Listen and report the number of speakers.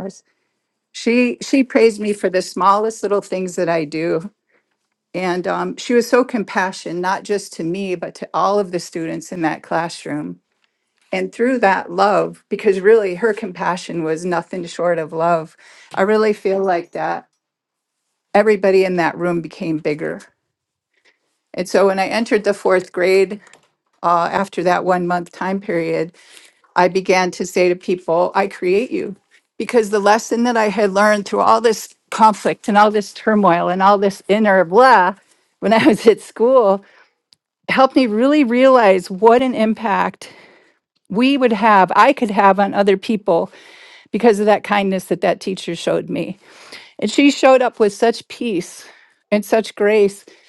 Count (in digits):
1